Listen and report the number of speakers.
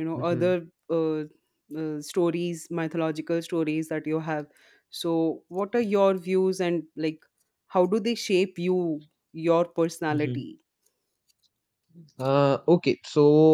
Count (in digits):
2